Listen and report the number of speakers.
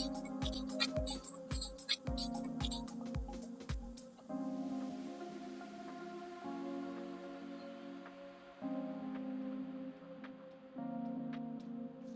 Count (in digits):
0